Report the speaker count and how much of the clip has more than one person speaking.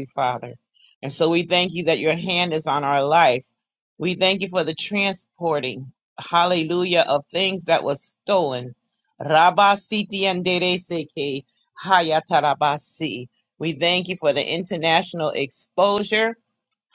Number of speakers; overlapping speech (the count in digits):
1, no overlap